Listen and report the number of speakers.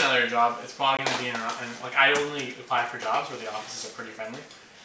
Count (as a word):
one